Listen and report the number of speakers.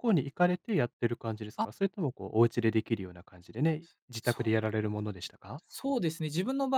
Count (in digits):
2